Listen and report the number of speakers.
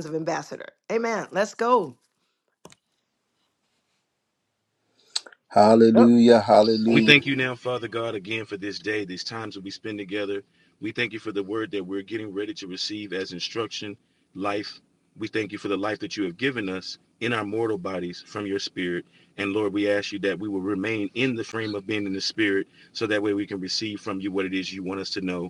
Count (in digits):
3